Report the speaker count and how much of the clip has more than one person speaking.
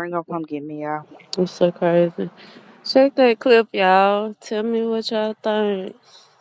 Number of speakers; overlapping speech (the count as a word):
two, no overlap